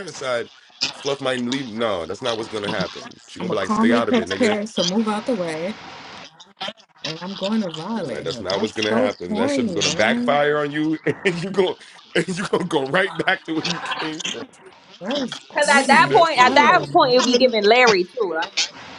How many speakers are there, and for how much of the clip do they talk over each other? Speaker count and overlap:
3, about 29%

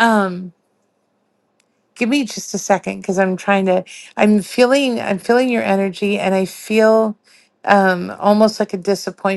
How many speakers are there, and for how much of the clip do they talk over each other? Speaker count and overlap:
1, no overlap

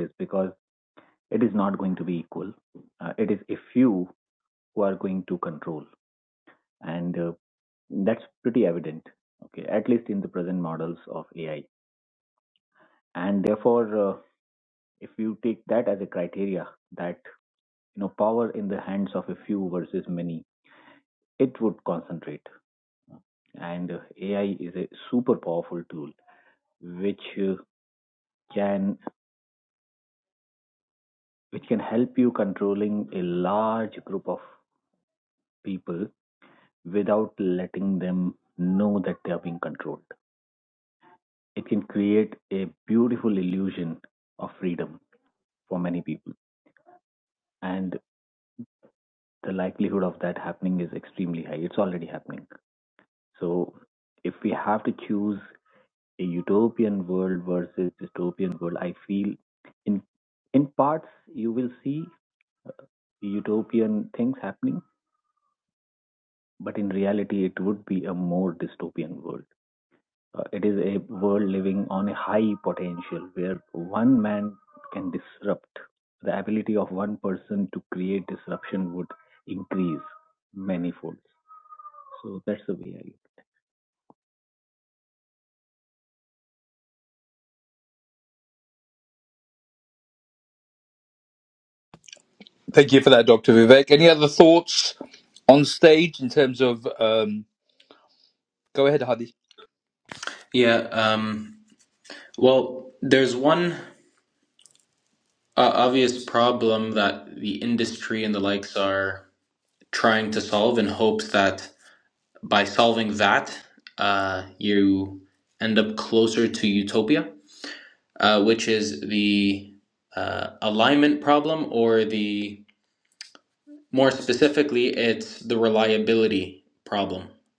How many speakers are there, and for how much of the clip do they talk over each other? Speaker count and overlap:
3, no overlap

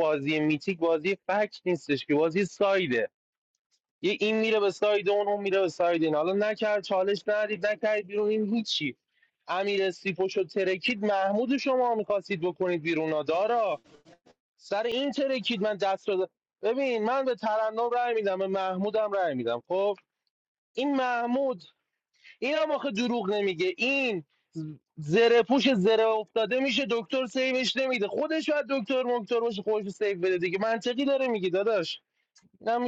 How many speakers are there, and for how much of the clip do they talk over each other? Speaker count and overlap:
1, no overlap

